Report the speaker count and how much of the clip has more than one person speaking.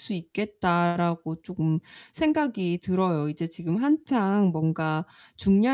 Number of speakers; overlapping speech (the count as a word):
one, no overlap